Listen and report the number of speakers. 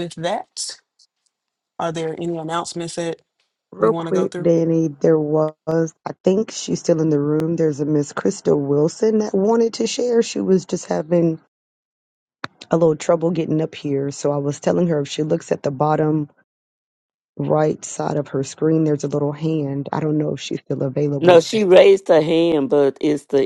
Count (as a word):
three